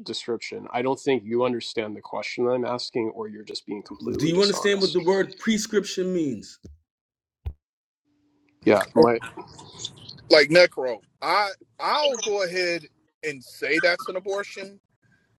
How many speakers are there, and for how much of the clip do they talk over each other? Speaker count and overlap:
3, about 6%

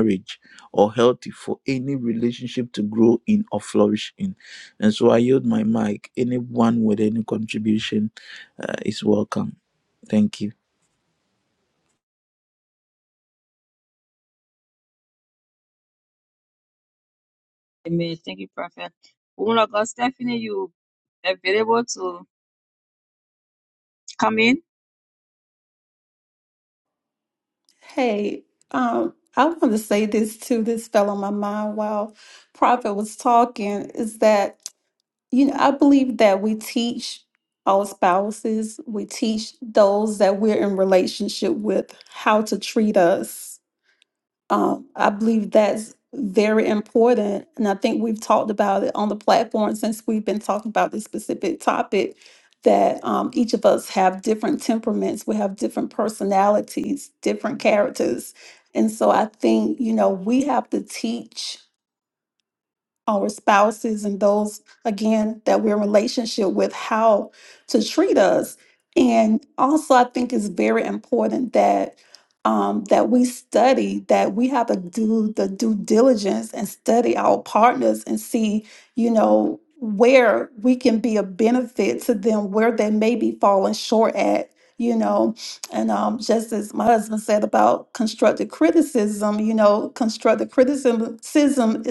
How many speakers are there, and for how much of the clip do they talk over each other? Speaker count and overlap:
3, no overlap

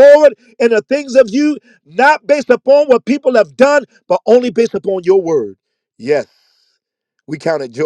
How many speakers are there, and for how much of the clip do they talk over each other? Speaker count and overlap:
1, no overlap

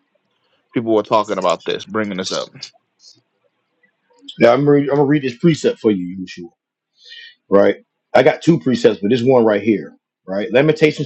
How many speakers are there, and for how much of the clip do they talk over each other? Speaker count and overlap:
2, no overlap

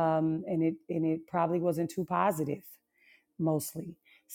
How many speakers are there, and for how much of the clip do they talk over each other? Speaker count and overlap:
1, no overlap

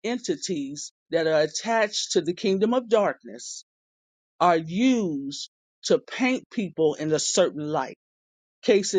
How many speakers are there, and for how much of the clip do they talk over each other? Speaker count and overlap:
1, no overlap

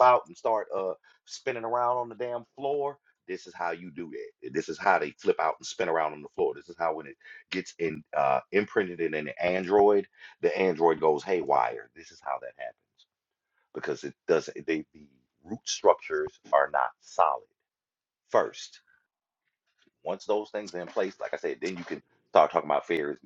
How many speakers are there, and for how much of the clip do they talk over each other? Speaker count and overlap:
1, no overlap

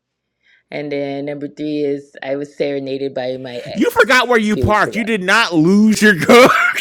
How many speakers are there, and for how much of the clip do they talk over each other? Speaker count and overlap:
2, about 15%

